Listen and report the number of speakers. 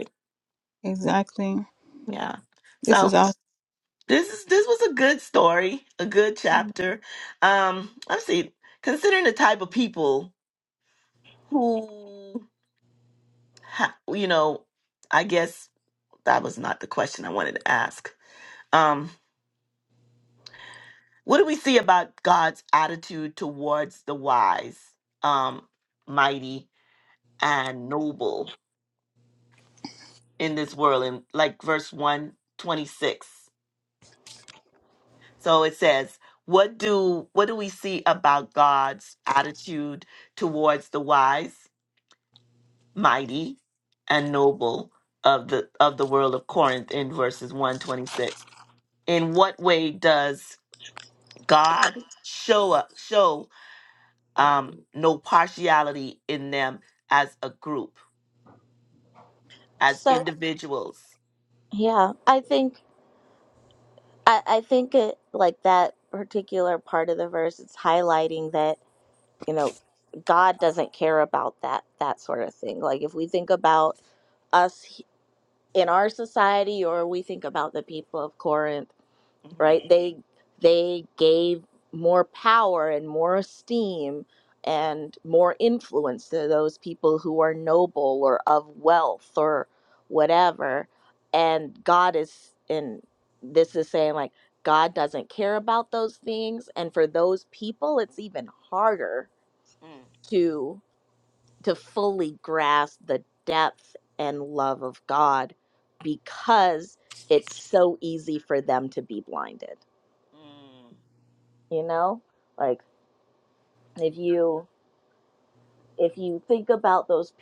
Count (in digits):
3